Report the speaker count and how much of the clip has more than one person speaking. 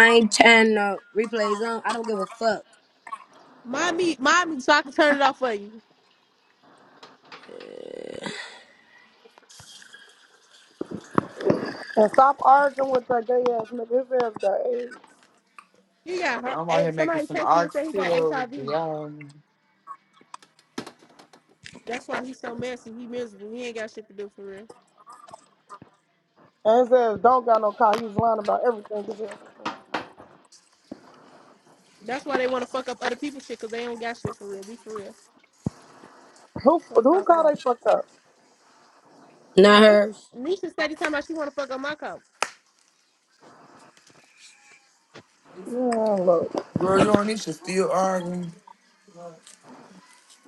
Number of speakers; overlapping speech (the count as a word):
four, about 6%